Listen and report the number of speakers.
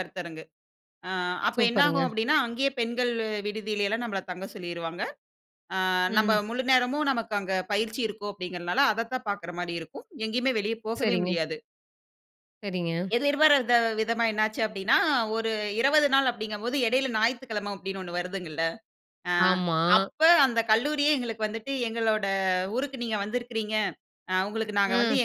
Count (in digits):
2